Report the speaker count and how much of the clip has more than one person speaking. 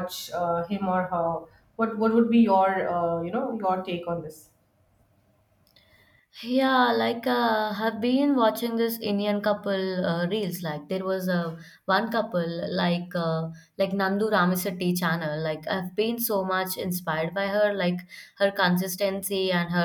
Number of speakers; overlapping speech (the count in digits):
2, no overlap